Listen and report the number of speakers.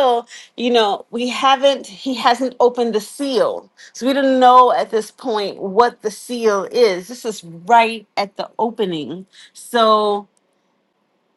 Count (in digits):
1